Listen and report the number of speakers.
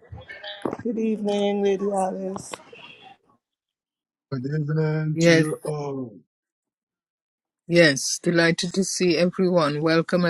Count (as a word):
three